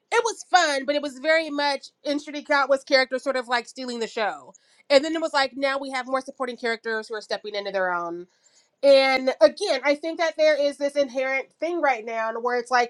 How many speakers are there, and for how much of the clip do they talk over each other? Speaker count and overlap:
one, no overlap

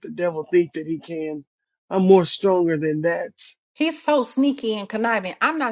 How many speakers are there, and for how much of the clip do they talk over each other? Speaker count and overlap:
two, no overlap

